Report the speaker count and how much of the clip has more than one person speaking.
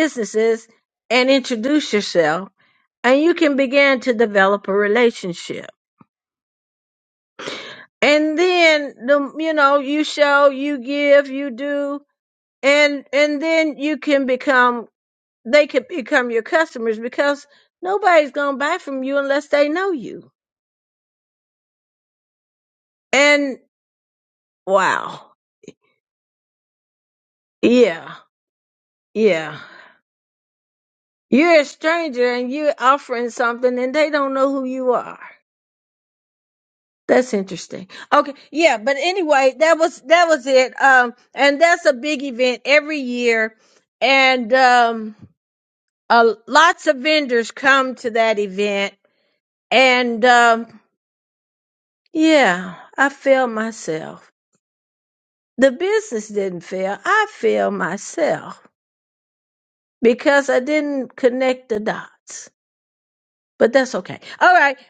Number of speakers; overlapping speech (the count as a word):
one, no overlap